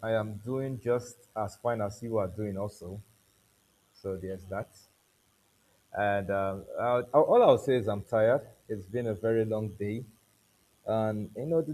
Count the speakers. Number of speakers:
1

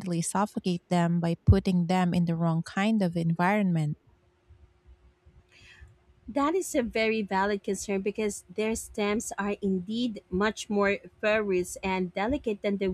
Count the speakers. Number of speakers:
2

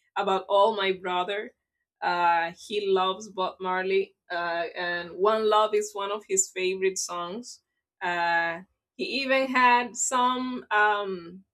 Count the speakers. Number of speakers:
1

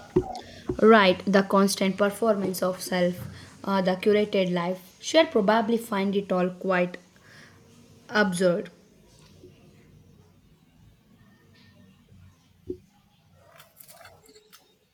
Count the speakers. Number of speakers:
1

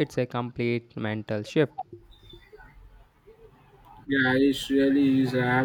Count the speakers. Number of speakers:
2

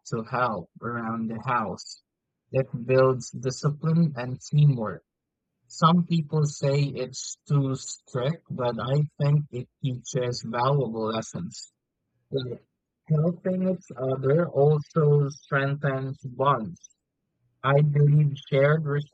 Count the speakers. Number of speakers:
1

